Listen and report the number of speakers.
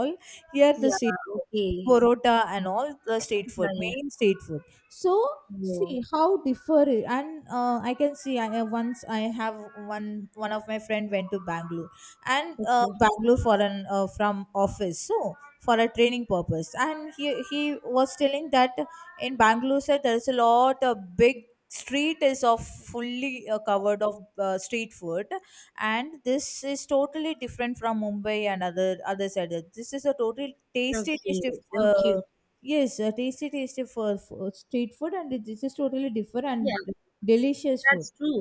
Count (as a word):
two